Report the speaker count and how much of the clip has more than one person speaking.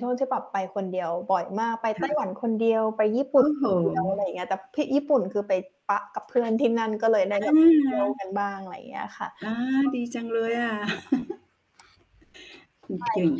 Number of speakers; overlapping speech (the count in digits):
2, about 7%